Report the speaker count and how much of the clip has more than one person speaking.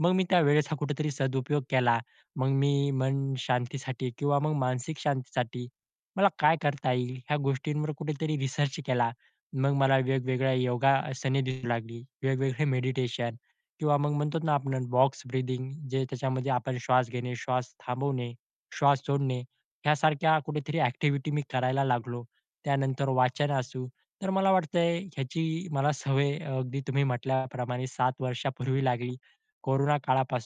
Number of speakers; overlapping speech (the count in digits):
1, no overlap